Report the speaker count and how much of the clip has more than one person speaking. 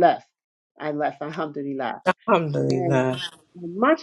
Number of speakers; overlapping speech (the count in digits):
2, about 9%